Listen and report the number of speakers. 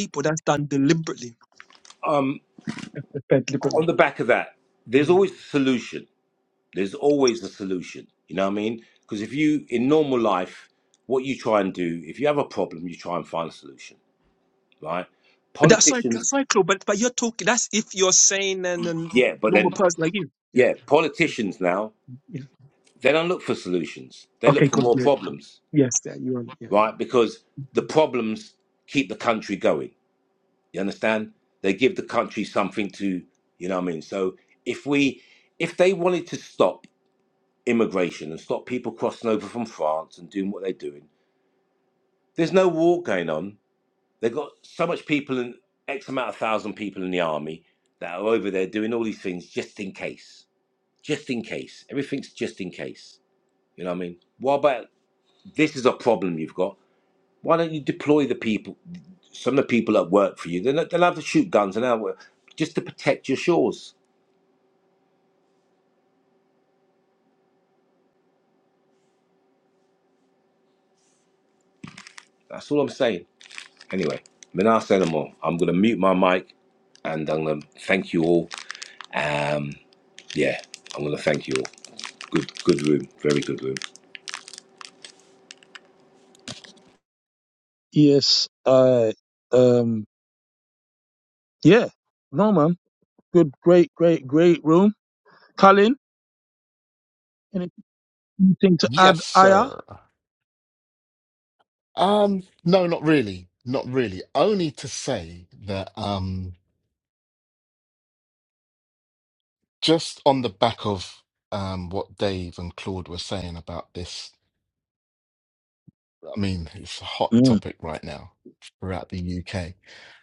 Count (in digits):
4